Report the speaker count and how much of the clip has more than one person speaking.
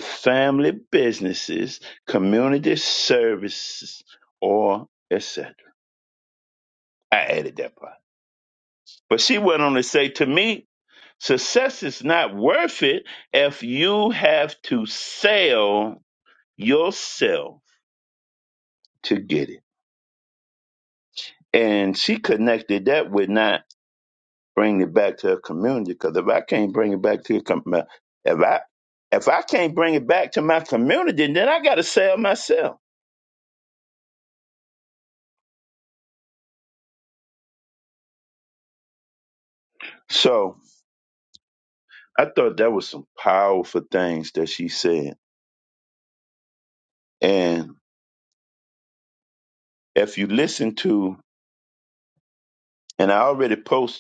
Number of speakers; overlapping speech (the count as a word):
one, no overlap